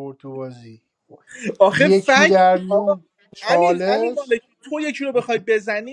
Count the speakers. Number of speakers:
two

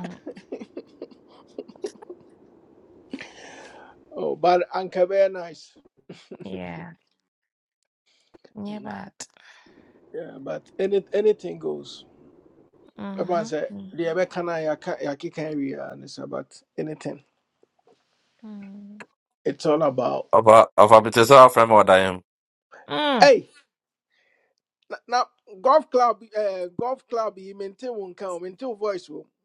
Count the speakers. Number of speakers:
three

